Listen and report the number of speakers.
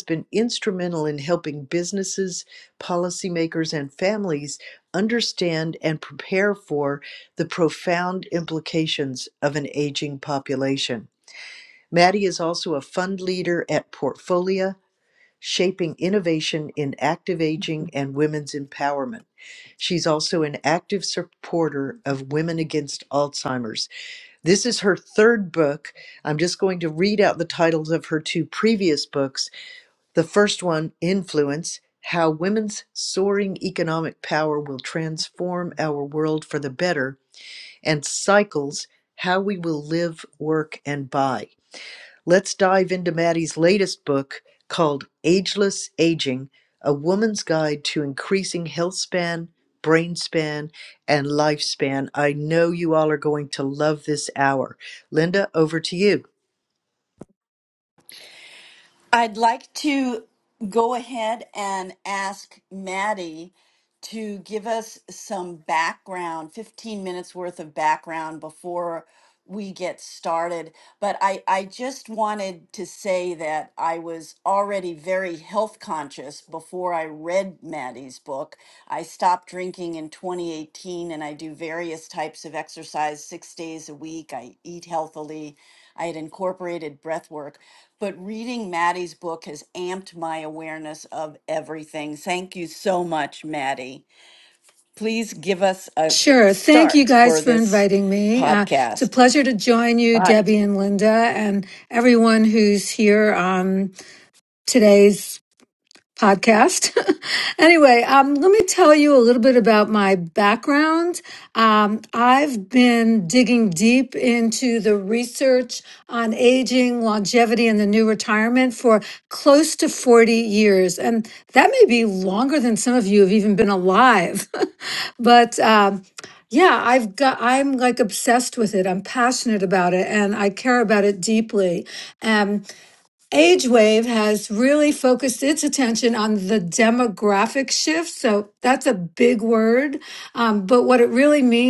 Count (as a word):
three